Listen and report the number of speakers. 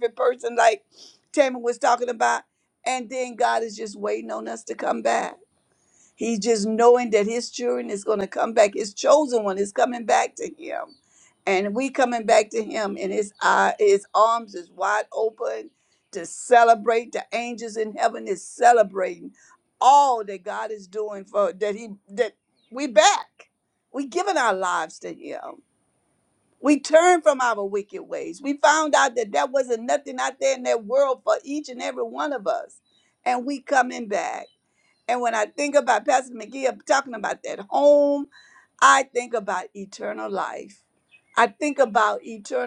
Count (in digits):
1